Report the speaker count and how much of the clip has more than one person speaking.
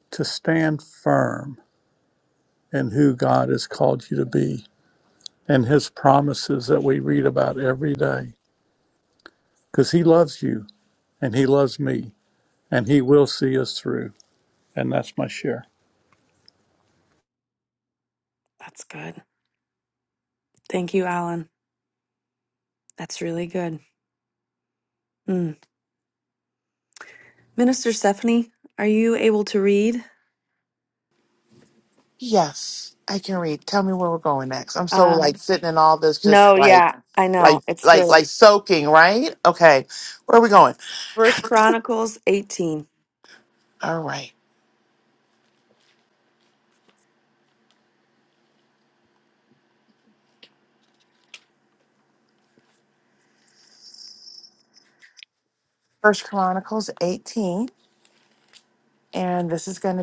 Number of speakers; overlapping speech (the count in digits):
3, about 3%